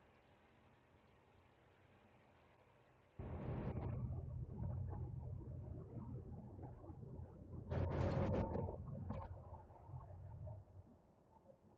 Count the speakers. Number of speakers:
0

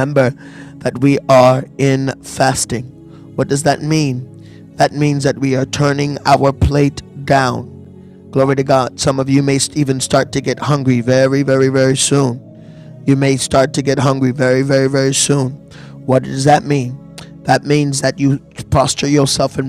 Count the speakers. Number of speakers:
1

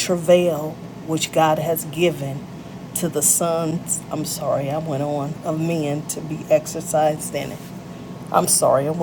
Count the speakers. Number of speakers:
1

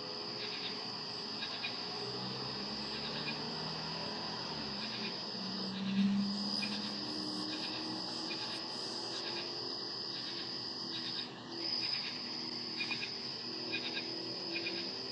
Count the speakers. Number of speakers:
0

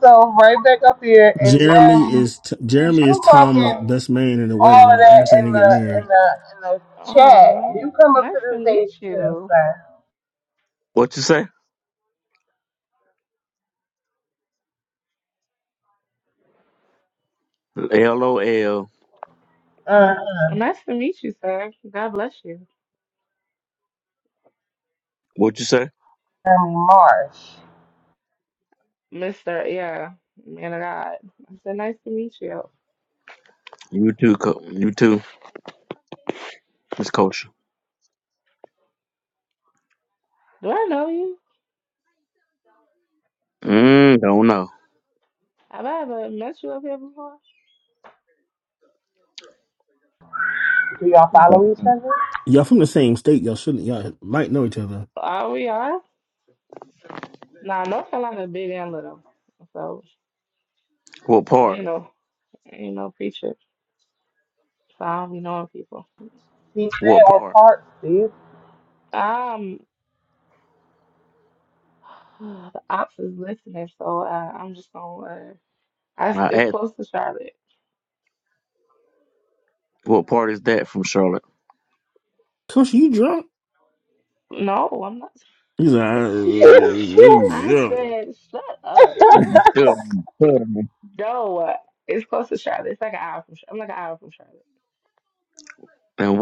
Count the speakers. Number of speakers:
4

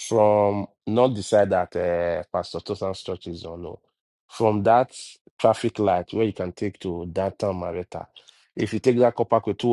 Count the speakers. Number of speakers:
1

